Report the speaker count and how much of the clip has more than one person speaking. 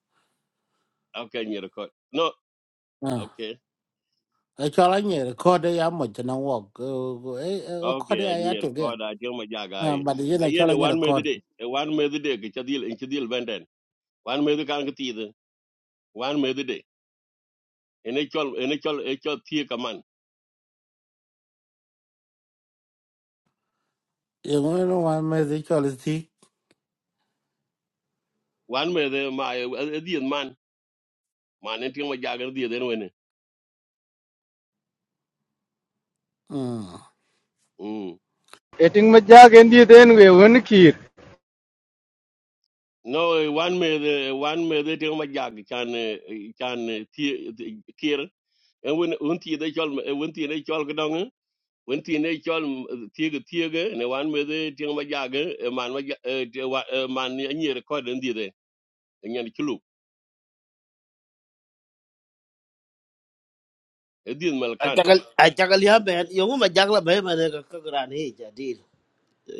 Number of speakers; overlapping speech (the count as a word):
four, about 4%